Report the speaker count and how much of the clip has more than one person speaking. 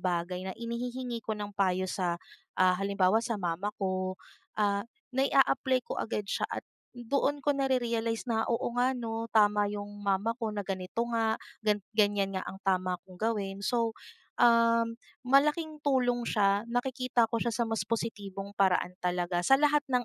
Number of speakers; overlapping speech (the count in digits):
1, no overlap